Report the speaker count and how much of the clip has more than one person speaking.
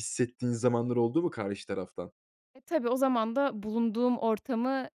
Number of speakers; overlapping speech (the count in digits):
2, no overlap